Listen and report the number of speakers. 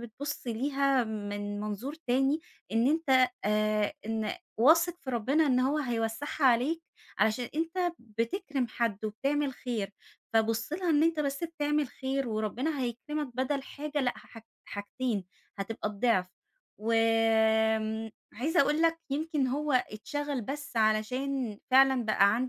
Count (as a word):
one